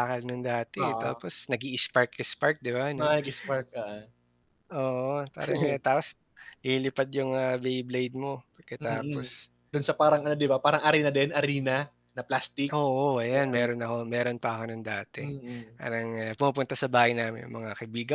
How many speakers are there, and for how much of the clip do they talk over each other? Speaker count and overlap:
2, about 6%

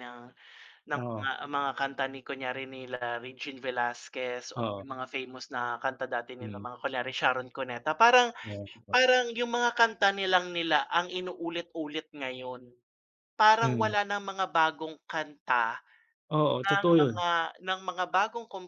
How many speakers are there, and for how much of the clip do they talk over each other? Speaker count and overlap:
2, about 9%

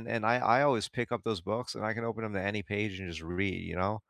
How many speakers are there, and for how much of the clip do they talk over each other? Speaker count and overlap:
1, no overlap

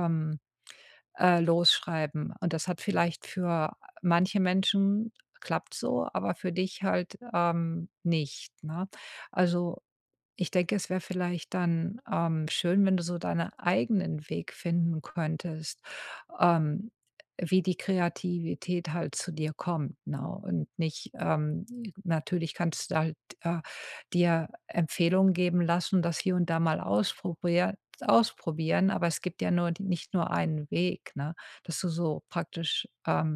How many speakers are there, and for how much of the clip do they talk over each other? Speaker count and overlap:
1, no overlap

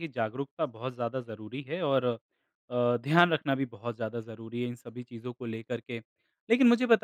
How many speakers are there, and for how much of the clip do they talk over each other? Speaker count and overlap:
1, no overlap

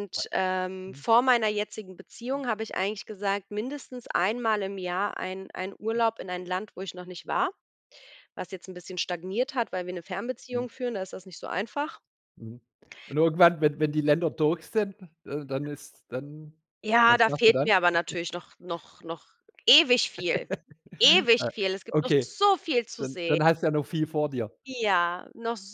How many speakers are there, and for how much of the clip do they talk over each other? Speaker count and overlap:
2, about 6%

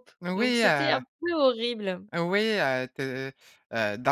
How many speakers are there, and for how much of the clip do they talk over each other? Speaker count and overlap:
2, about 20%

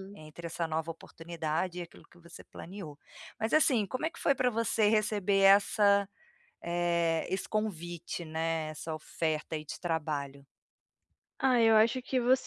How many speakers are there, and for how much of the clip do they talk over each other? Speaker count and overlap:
2, no overlap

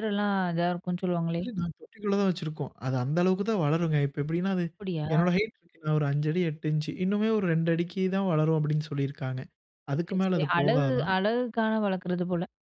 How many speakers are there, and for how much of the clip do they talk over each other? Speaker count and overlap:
2, about 9%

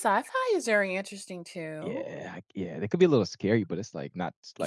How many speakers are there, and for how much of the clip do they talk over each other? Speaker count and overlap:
2, about 7%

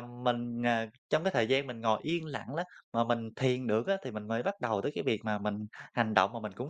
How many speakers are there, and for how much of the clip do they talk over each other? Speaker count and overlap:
1, no overlap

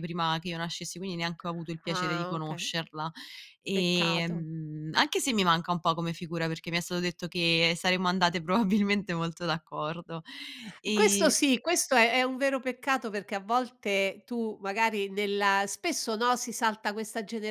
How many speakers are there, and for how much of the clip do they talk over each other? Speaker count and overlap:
2, about 11%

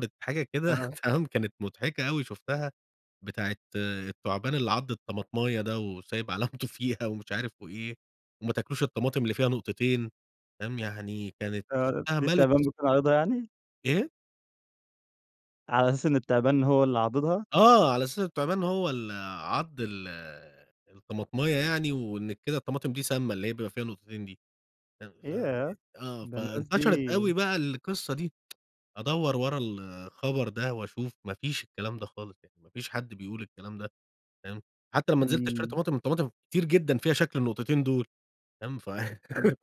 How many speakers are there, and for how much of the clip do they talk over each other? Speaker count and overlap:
2, about 7%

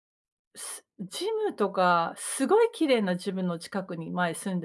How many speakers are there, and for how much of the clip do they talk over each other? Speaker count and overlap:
1, no overlap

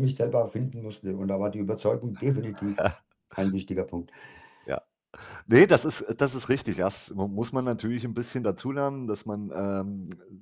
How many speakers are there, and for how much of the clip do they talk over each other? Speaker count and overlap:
2, no overlap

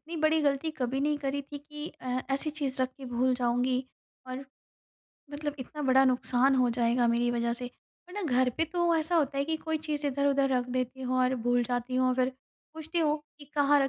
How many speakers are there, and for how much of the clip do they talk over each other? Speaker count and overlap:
1, no overlap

